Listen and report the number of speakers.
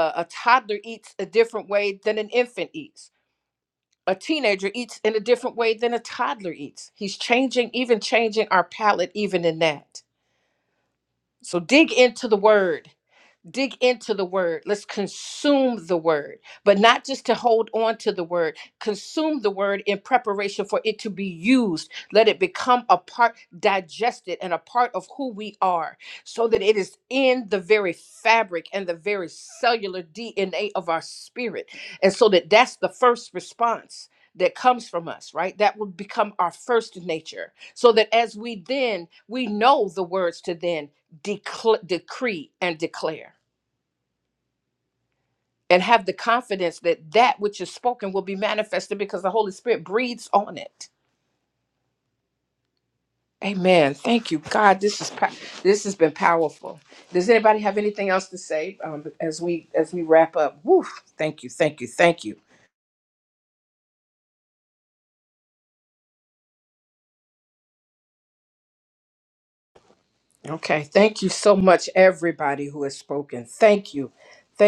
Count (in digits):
1